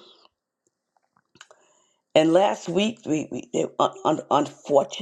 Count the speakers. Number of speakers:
1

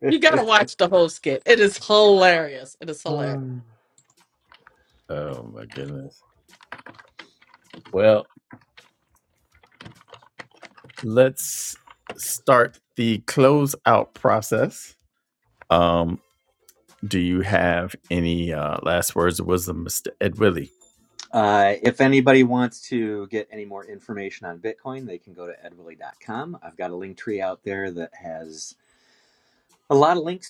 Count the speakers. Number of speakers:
3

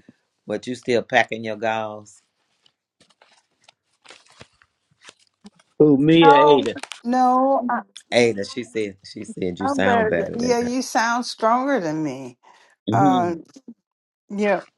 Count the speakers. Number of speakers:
3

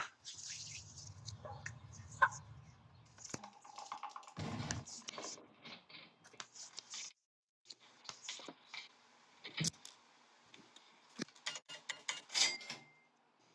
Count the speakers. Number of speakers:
0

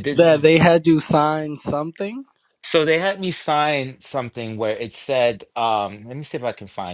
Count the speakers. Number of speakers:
2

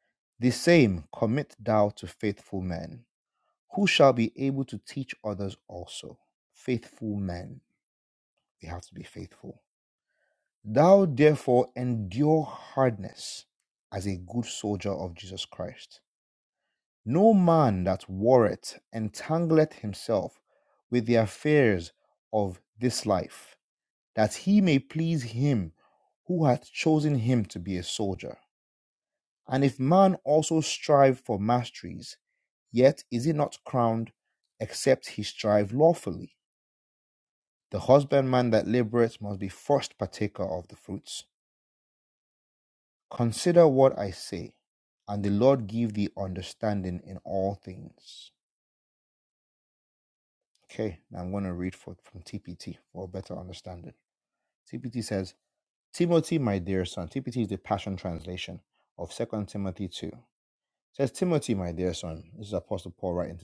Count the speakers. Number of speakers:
1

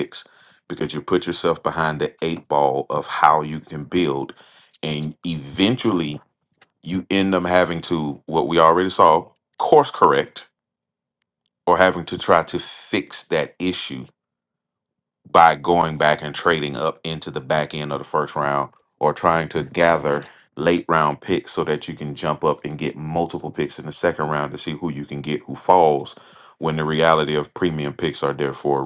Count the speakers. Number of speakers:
1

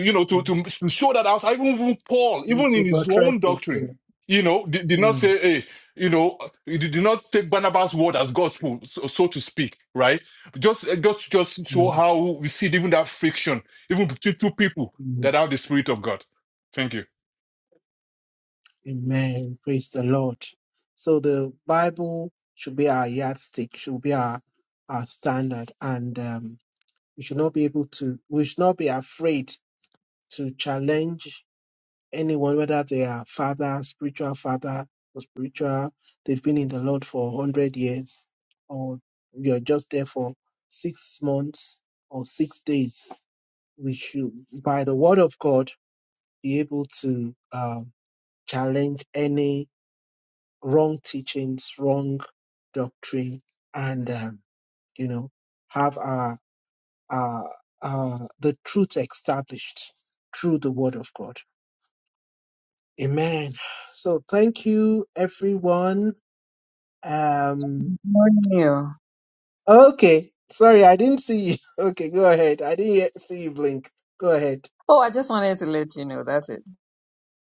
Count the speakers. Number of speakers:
3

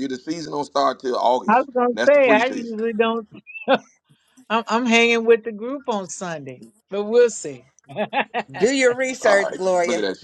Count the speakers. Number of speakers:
3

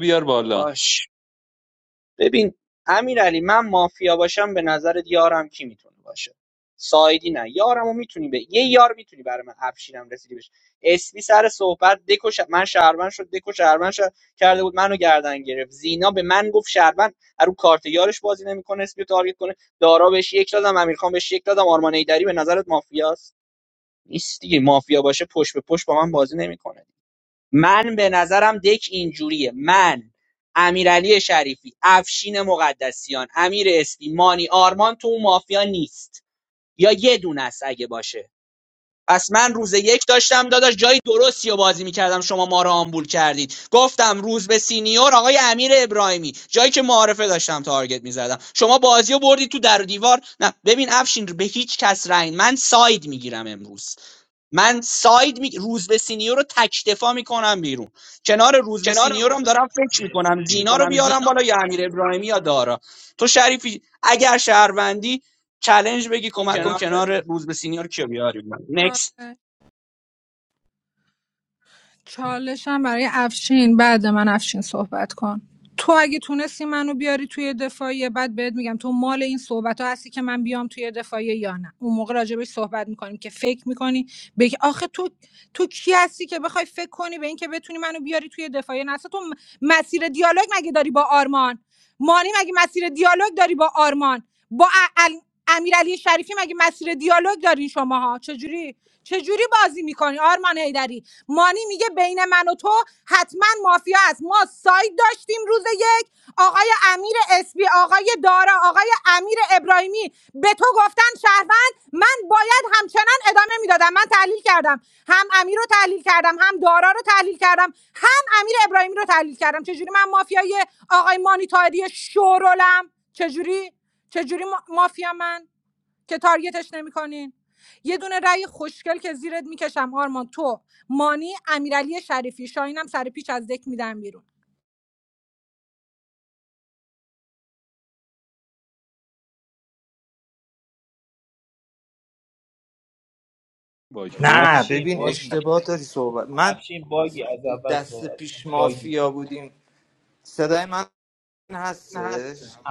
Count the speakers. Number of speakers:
5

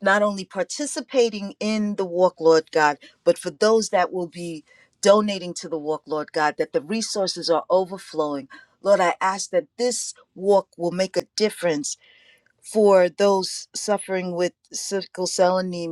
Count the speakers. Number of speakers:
1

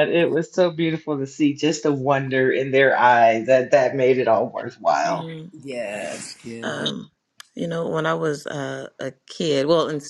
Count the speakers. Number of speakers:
3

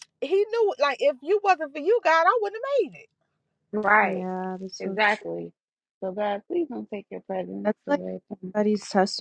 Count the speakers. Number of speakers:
3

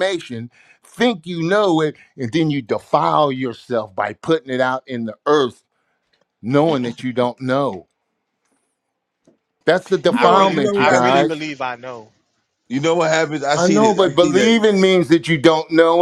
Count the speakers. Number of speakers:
3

